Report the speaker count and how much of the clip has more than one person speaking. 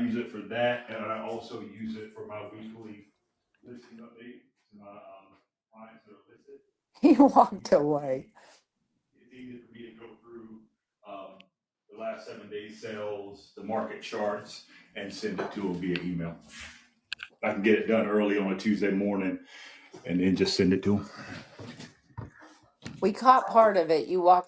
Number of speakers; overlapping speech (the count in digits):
2, no overlap